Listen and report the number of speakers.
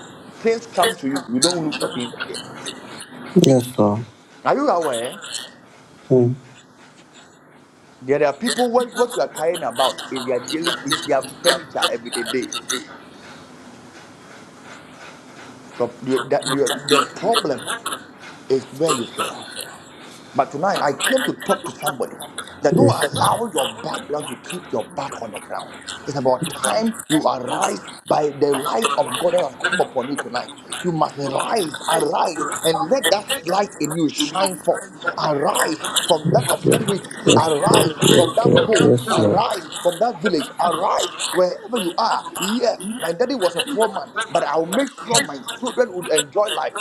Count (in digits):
2